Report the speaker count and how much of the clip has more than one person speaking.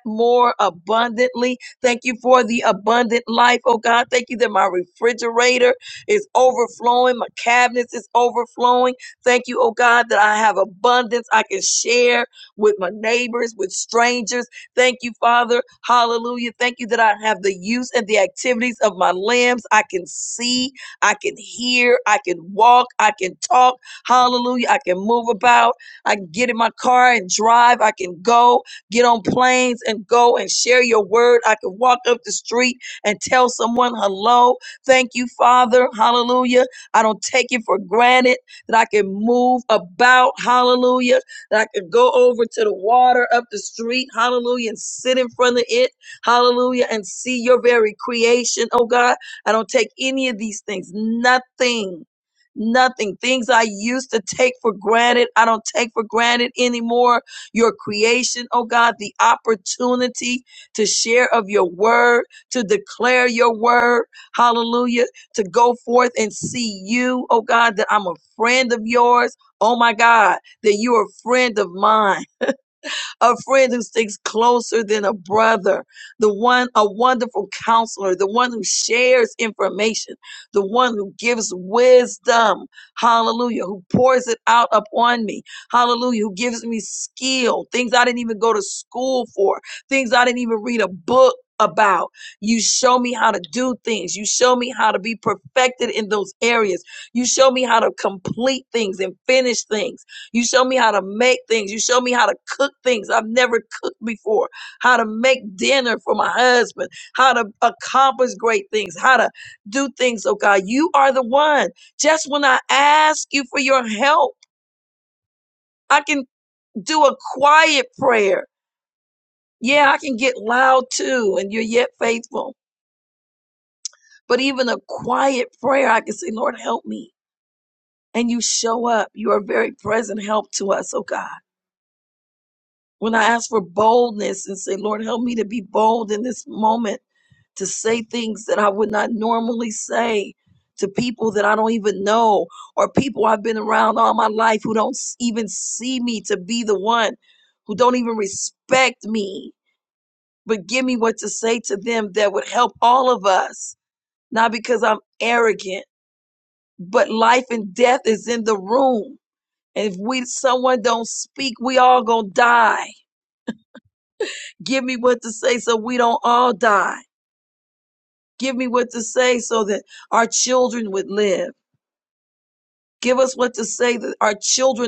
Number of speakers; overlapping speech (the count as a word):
one, no overlap